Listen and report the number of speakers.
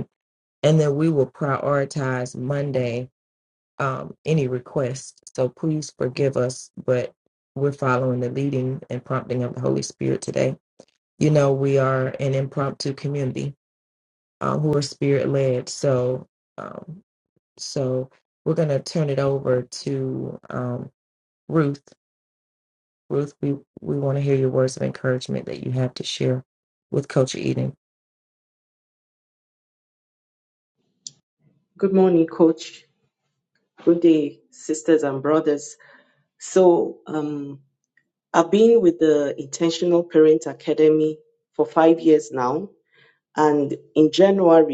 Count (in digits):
2